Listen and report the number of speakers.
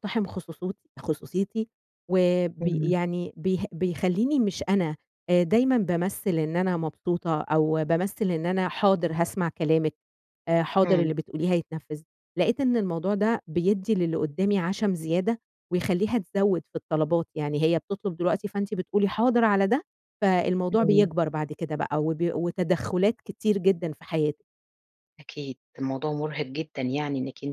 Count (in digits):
2